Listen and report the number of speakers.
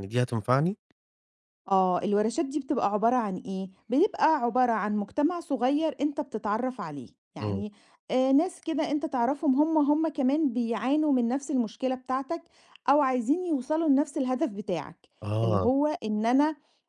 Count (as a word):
two